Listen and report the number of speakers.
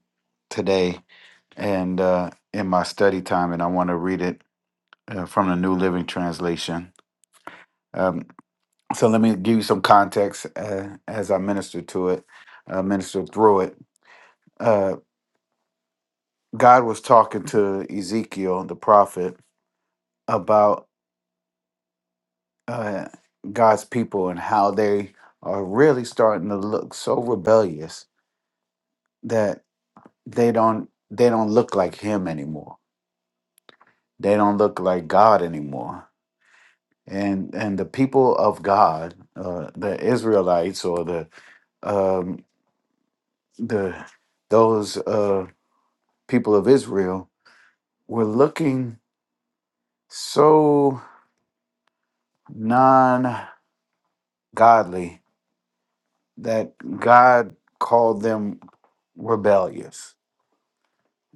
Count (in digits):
1